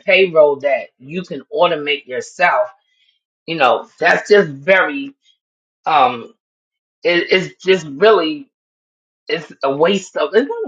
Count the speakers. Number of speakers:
1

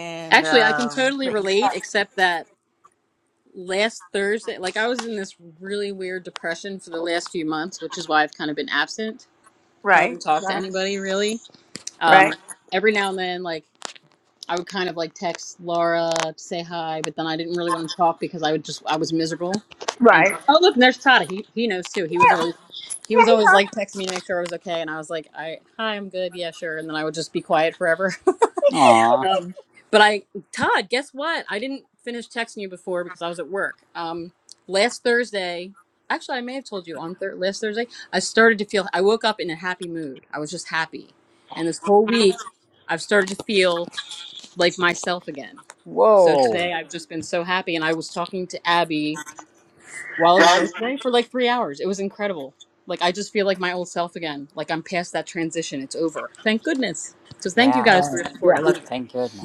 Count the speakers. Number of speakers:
3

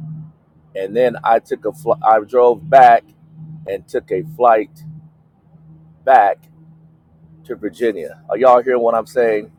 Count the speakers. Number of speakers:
1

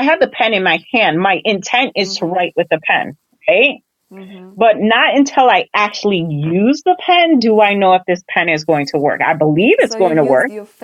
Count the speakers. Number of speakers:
2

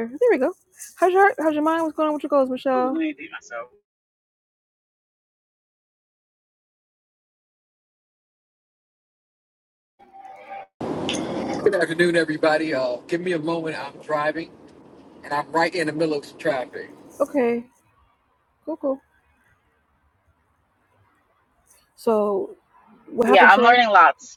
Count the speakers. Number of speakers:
3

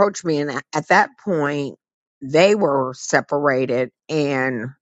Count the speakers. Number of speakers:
1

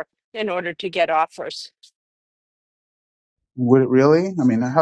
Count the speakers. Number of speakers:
2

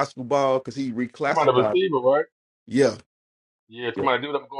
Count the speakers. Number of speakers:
2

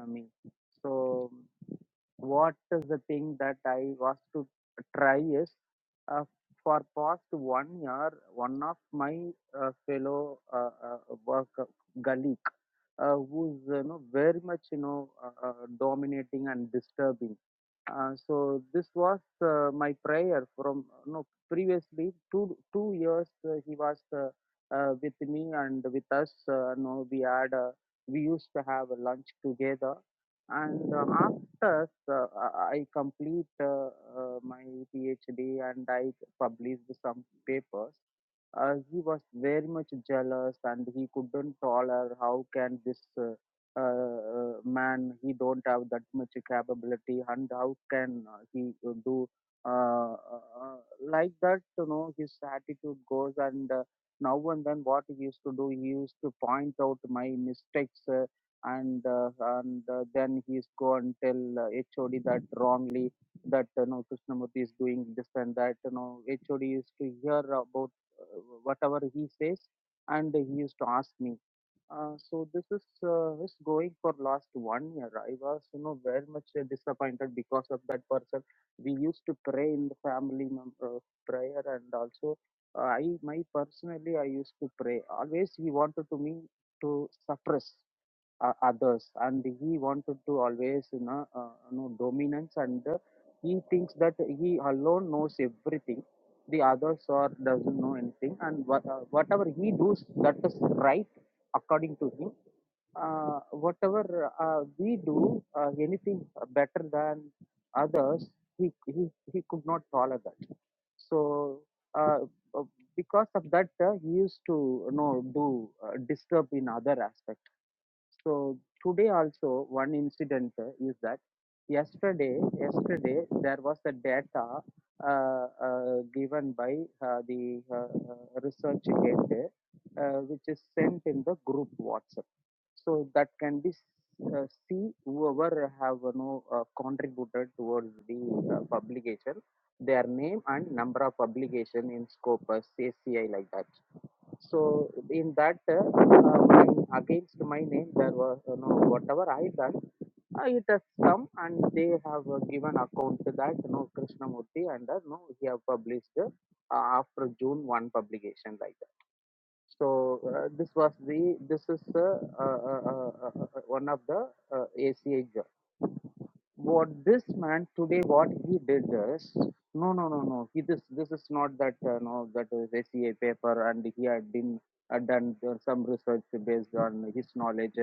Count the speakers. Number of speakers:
1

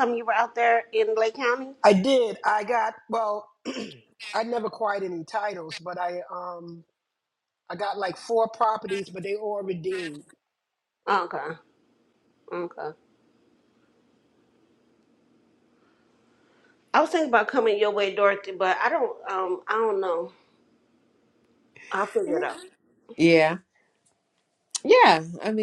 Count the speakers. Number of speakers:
3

